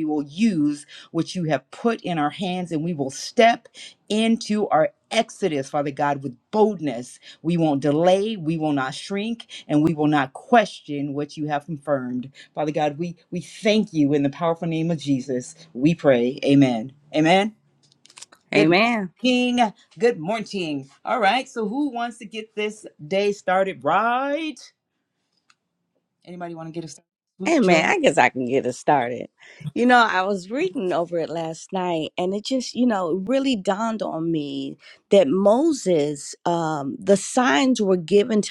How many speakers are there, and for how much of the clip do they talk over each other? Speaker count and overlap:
2, about 2%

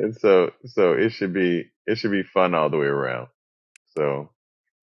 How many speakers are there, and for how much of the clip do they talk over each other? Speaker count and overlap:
1, no overlap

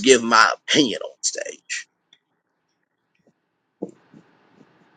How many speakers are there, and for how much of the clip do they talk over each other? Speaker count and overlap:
1, no overlap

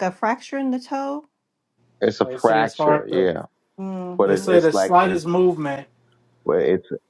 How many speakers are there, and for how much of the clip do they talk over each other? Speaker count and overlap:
3, about 25%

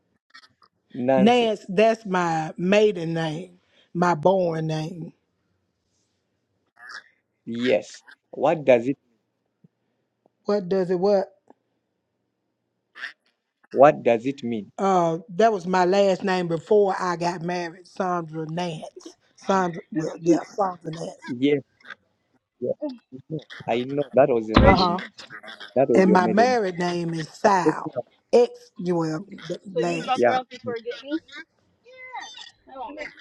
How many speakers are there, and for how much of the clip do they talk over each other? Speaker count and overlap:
3, about 8%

